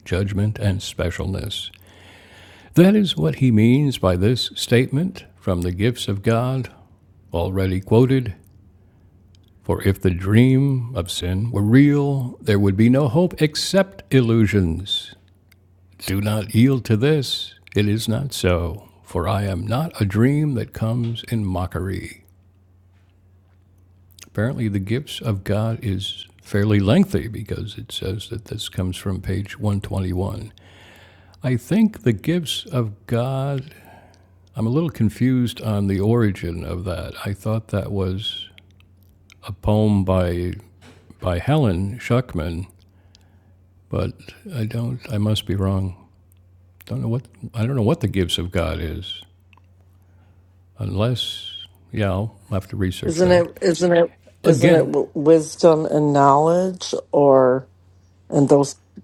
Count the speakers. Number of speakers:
two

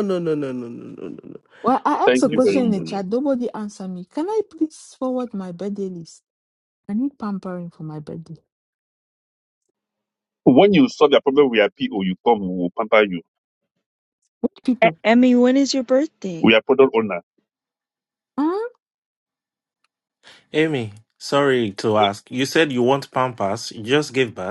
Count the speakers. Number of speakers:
five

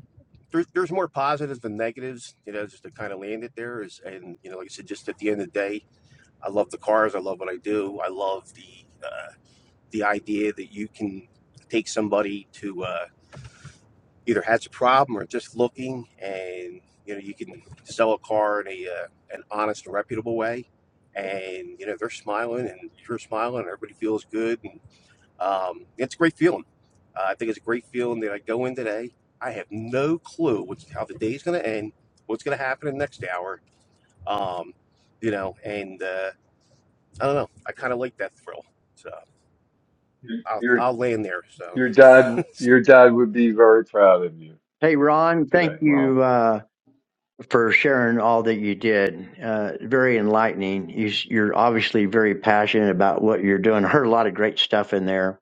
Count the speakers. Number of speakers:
three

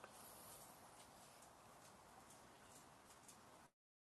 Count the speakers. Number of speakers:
zero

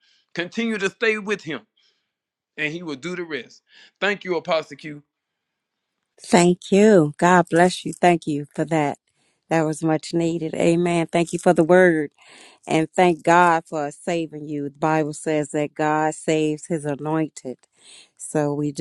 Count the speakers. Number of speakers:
two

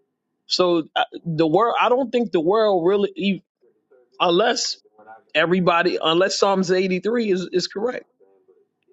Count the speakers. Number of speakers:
one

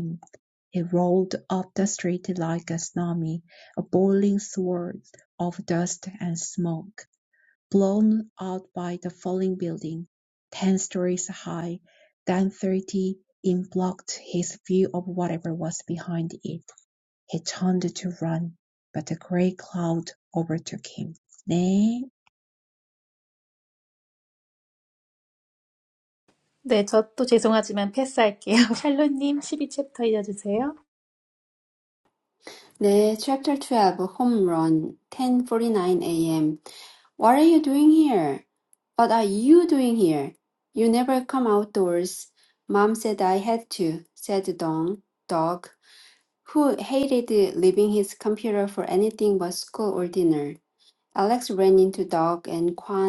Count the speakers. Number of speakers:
three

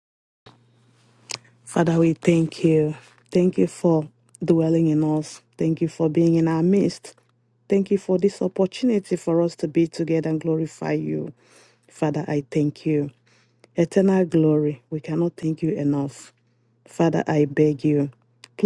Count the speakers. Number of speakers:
one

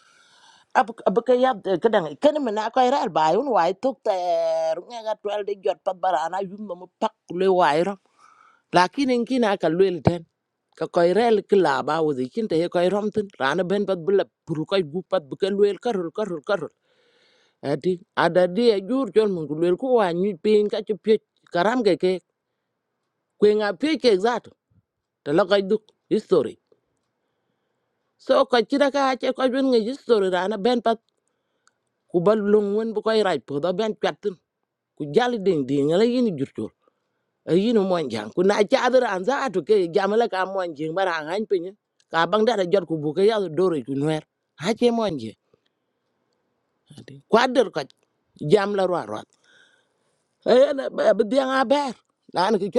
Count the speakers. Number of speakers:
one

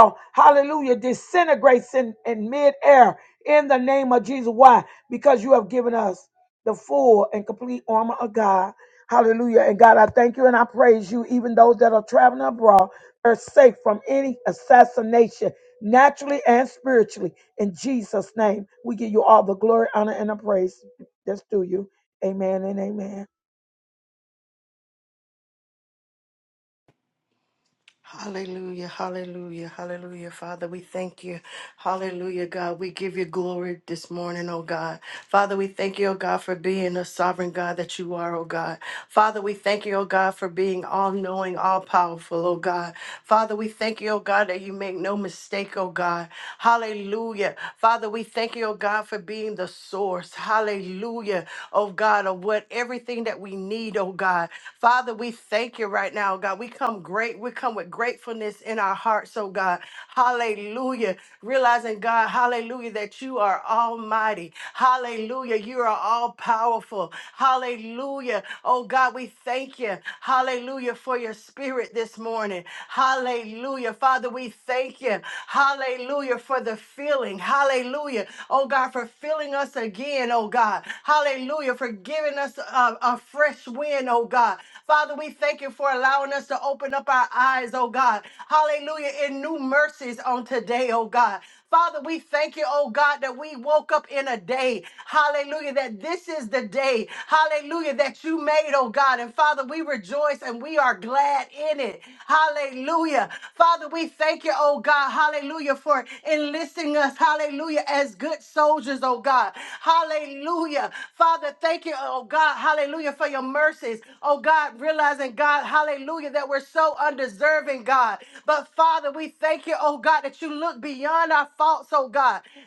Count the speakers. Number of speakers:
two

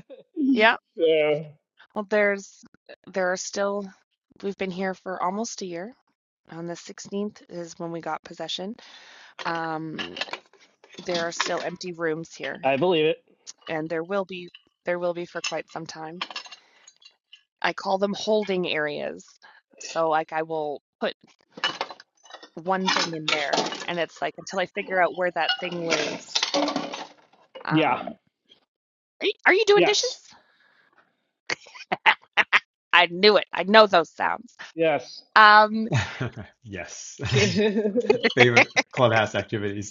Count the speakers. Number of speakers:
three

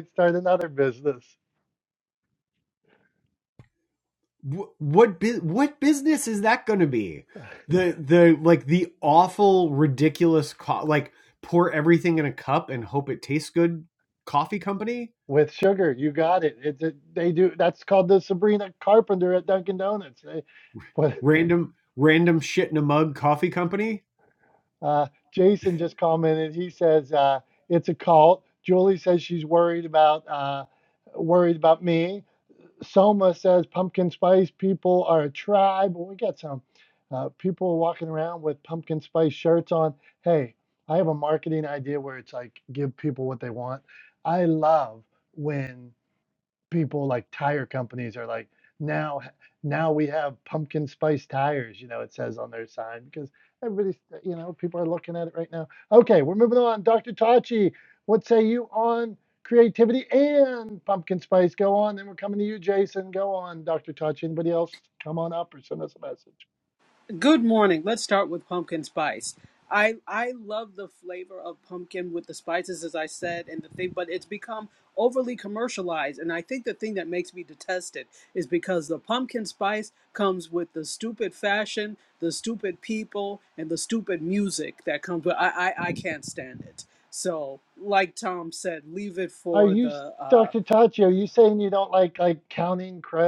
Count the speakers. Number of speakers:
three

